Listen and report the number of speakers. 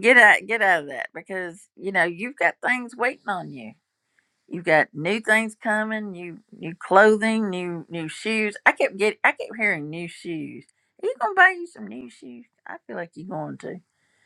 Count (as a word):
one